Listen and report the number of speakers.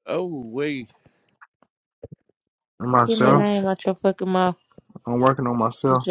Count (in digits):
3